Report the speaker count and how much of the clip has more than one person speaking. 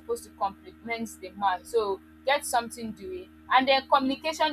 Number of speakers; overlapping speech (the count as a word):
one, no overlap